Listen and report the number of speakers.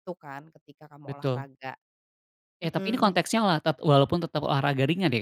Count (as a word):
two